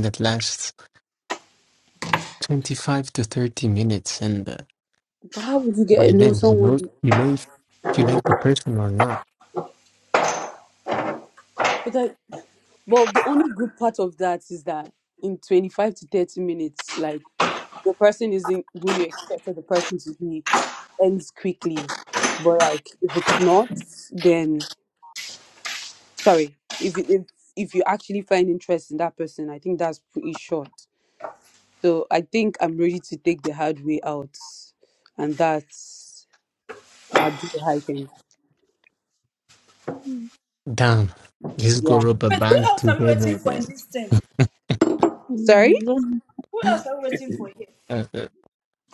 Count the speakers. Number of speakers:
4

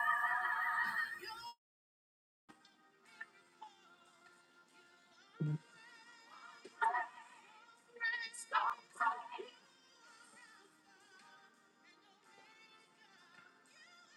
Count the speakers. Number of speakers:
0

